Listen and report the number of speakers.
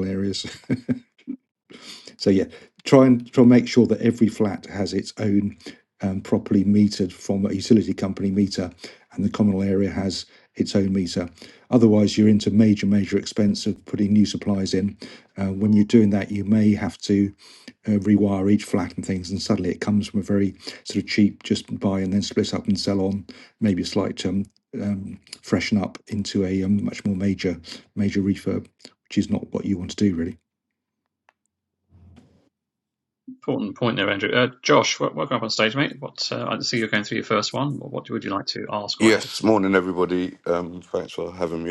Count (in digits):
3